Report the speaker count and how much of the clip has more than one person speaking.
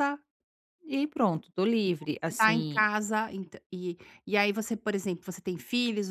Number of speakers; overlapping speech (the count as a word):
two, about 9%